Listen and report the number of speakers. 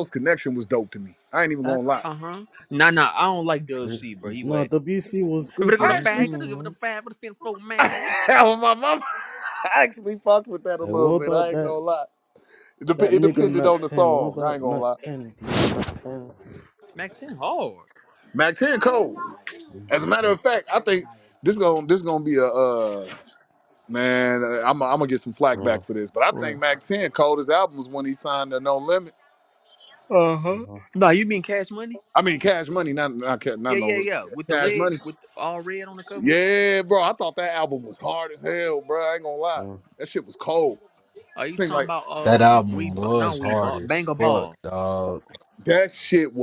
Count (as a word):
four